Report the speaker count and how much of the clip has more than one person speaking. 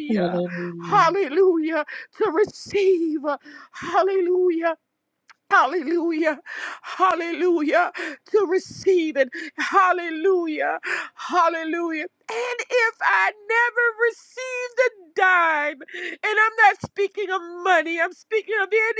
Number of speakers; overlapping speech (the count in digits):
2, about 2%